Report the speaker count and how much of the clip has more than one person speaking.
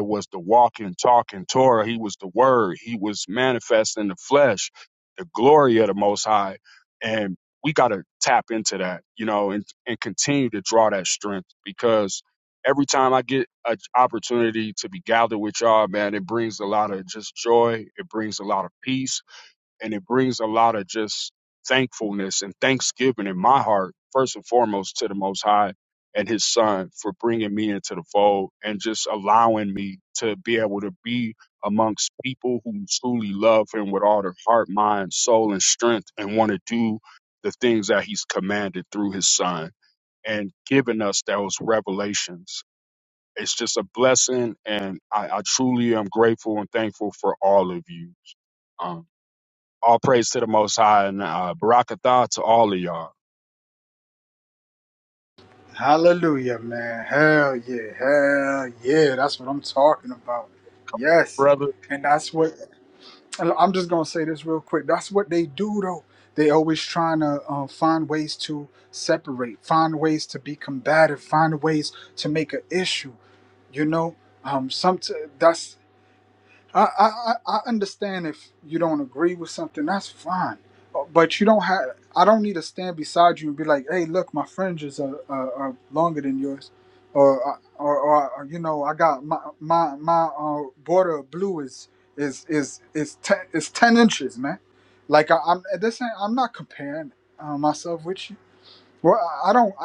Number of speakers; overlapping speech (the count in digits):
2, no overlap